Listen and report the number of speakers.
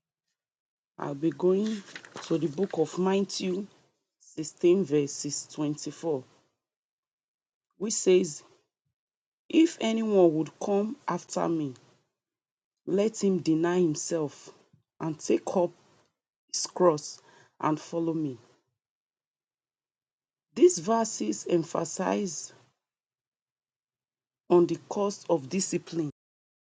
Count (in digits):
1